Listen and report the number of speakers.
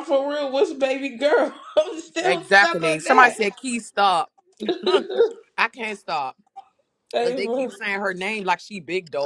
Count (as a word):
two